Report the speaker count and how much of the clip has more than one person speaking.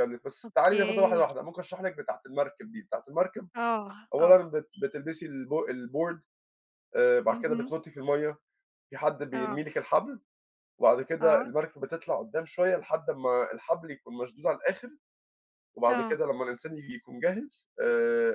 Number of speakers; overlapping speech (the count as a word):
two, about 12%